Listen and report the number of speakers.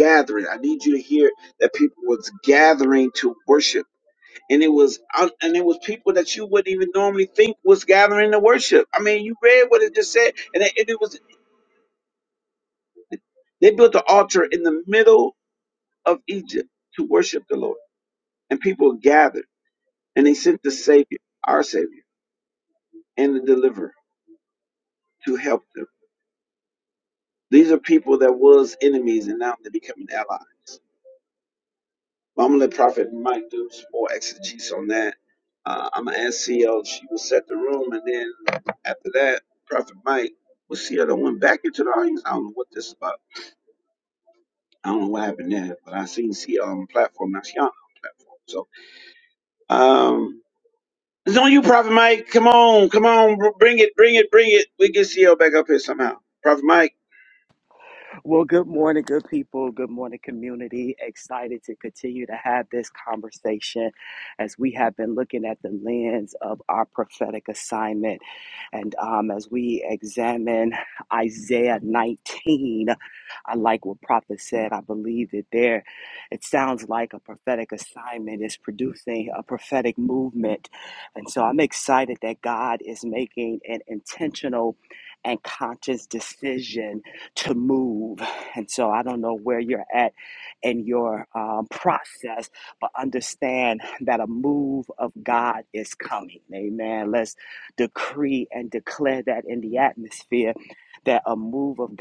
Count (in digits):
2